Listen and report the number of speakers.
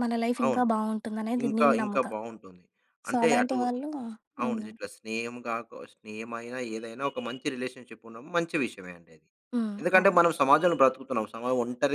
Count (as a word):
two